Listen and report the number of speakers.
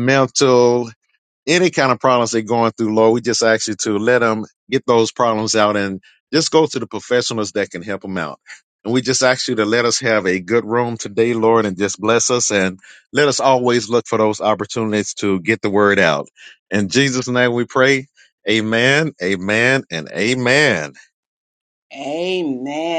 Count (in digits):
2